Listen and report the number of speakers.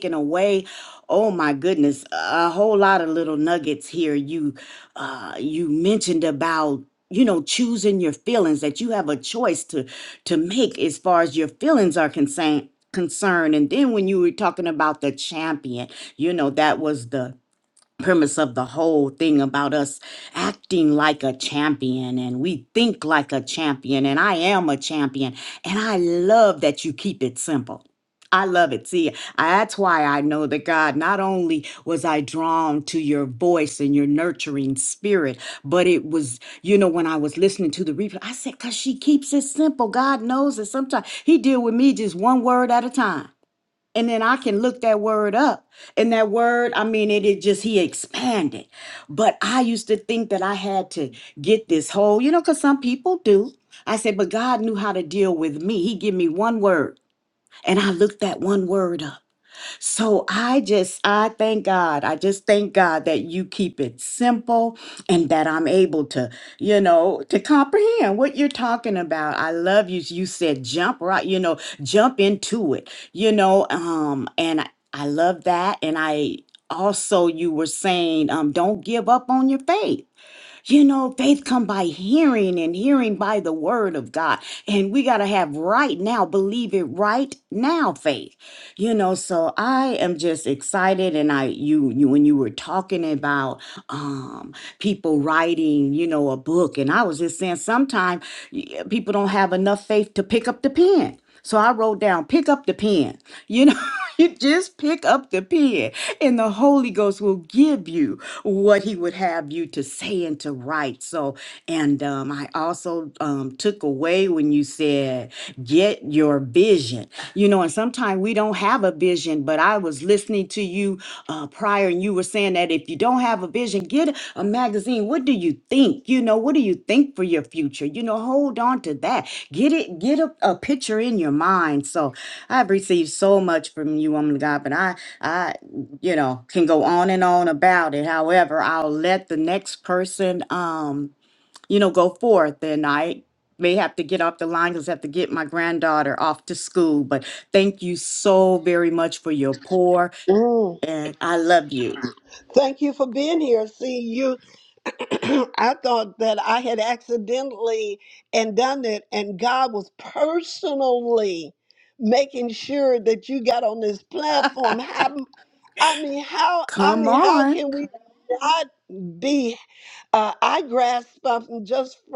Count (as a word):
two